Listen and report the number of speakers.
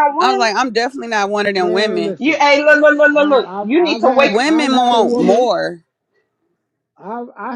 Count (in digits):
3